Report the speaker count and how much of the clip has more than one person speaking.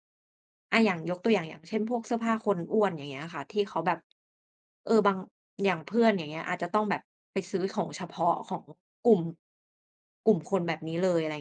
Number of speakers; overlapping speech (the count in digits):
1, no overlap